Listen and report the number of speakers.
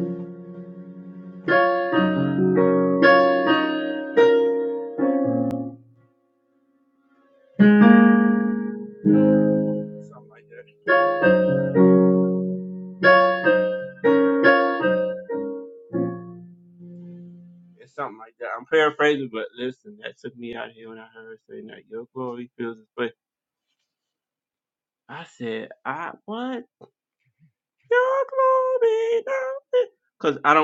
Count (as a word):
one